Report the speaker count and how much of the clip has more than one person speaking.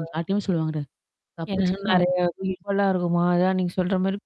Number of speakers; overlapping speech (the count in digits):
2, about 13%